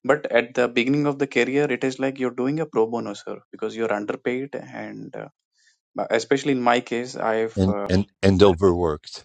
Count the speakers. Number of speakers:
2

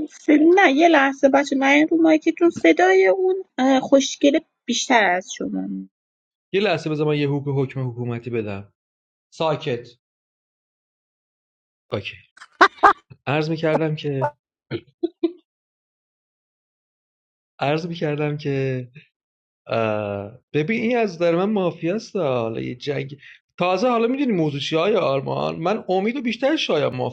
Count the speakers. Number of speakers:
2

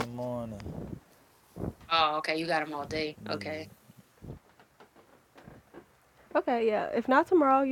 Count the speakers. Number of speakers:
3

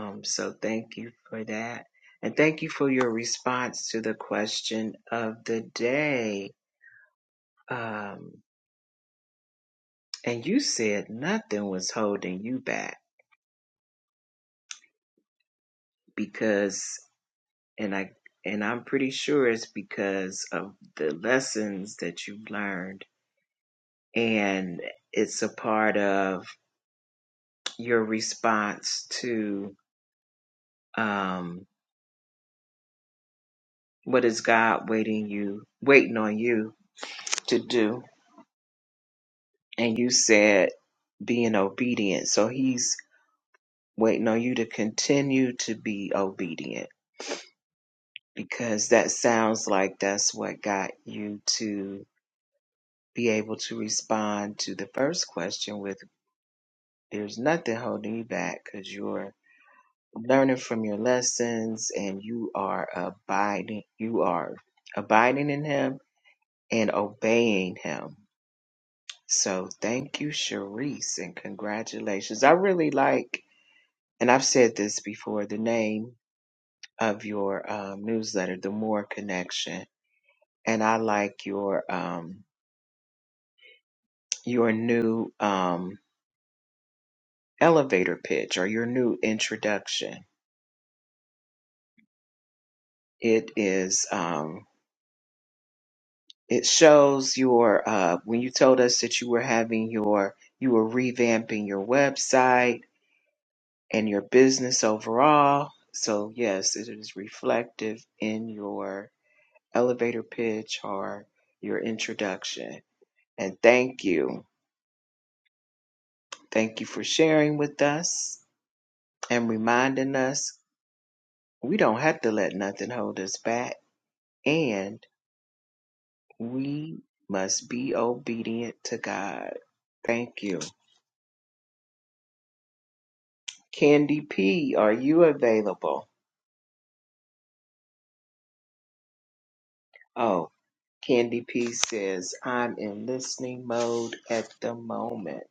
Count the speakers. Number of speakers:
1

